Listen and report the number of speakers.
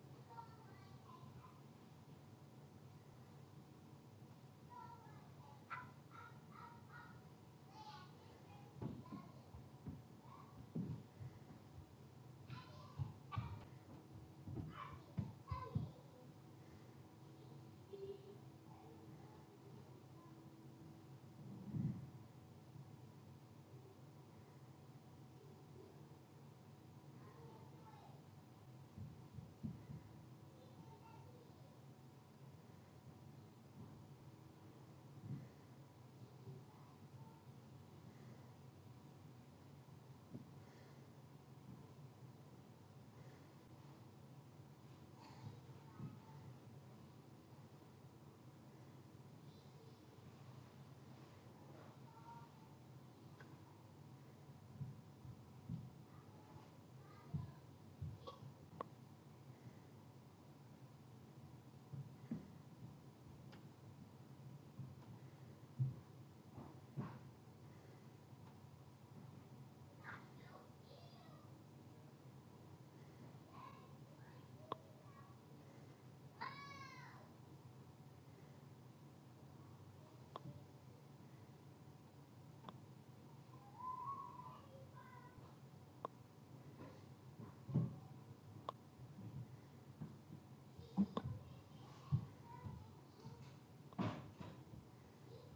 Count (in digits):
0